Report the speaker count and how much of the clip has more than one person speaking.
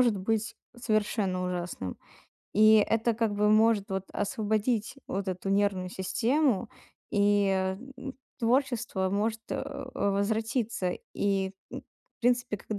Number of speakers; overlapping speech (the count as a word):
one, no overlap